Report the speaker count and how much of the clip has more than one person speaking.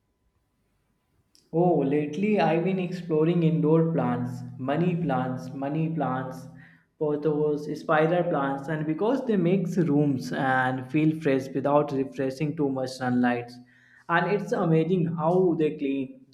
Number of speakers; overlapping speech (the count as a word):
one, no overlap